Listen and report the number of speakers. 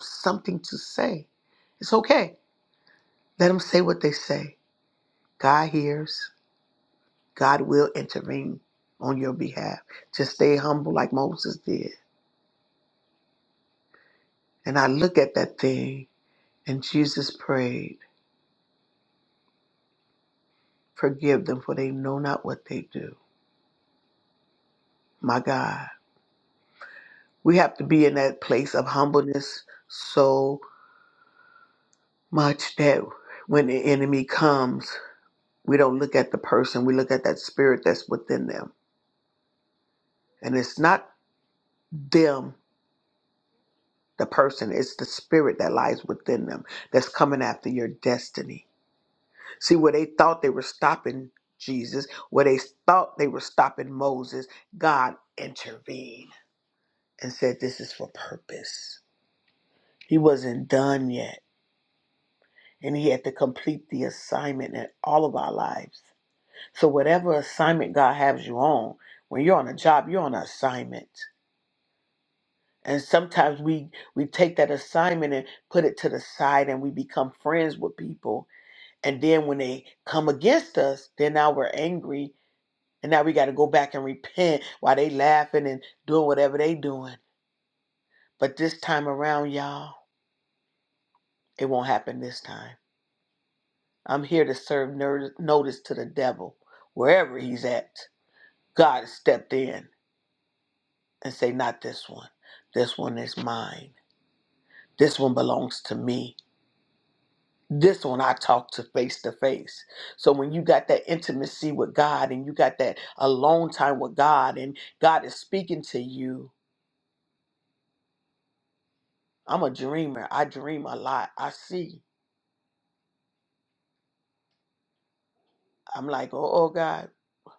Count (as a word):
one